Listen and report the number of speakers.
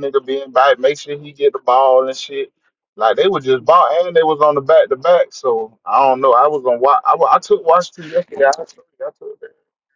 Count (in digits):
1